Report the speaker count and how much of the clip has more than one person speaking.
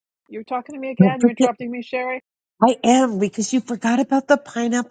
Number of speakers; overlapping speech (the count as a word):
two, about 10%